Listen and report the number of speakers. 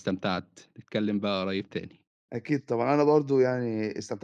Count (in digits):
2